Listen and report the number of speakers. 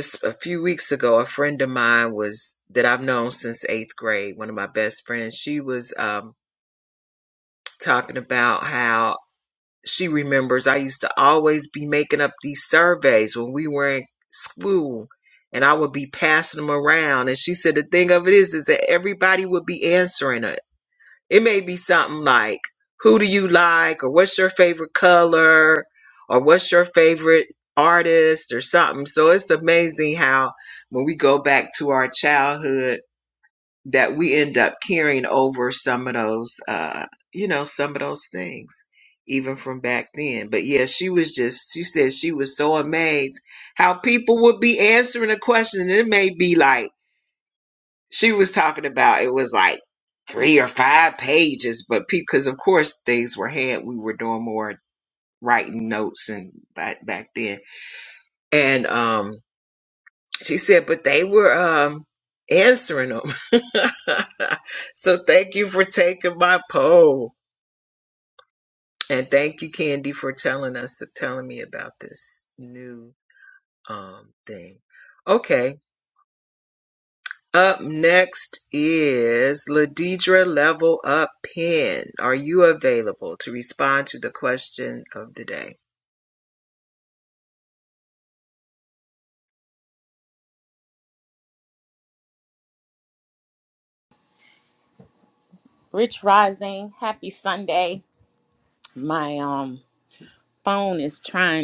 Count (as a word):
two